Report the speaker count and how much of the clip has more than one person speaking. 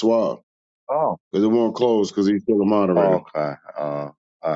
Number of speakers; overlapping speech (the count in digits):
2, about 5%